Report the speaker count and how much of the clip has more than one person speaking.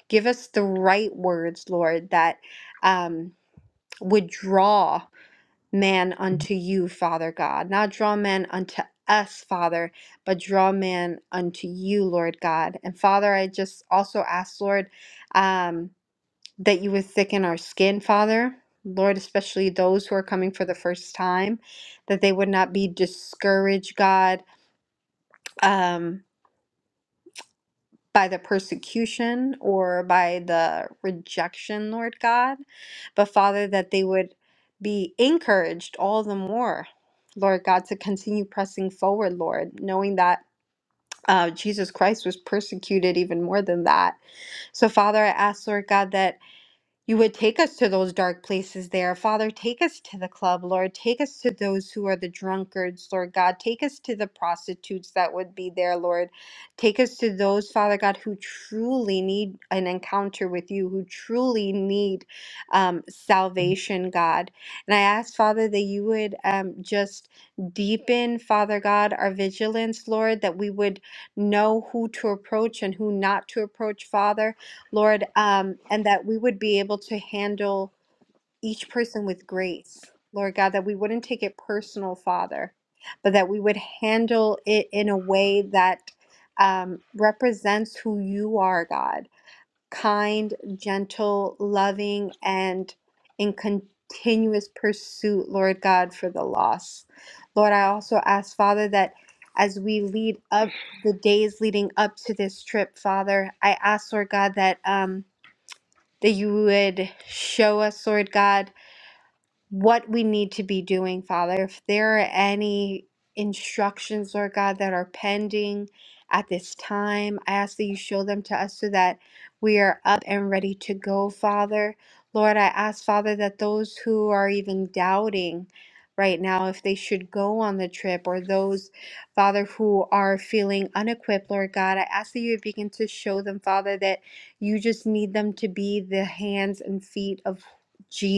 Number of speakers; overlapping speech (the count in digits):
1, no overlap